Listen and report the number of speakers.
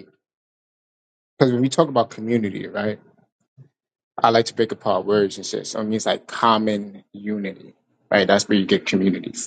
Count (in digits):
1